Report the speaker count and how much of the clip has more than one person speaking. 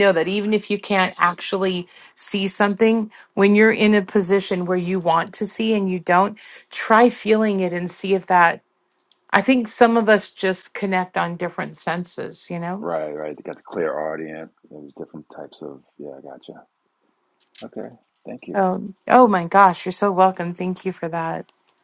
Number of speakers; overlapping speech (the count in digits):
2, about 1%